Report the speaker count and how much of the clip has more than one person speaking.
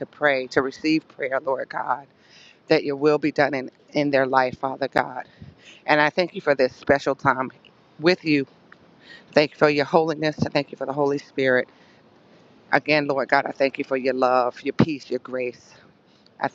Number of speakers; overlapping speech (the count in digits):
1, no overlap